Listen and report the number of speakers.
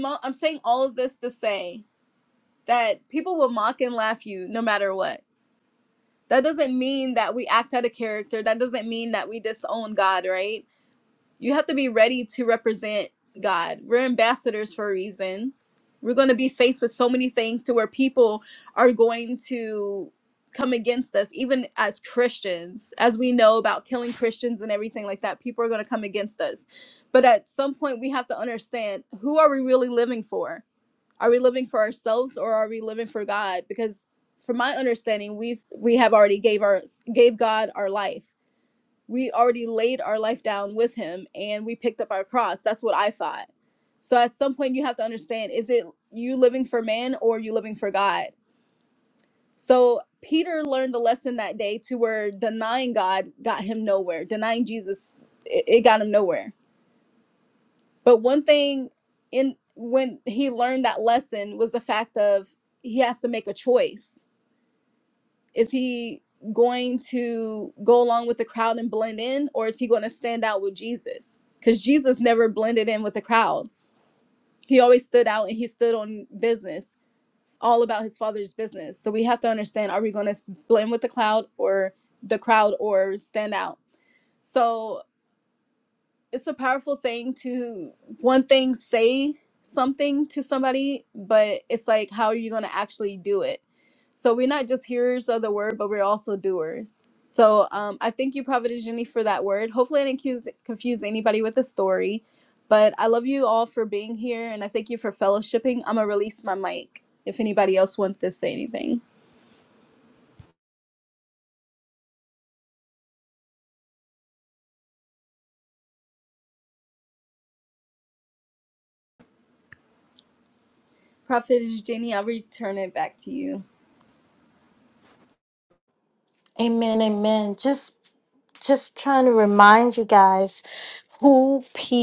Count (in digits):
2